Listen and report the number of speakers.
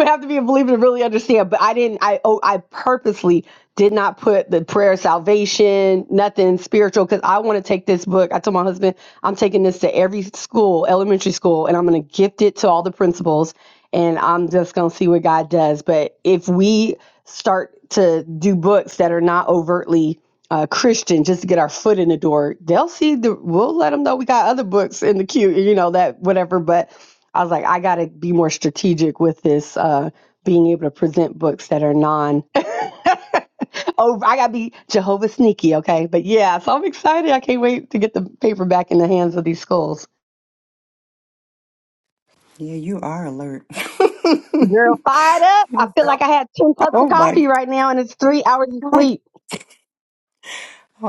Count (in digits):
2